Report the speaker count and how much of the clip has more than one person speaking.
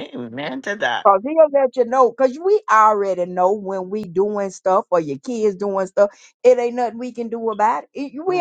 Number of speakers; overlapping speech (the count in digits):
2, about 2%